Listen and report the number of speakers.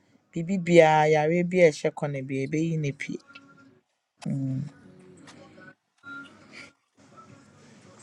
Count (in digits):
1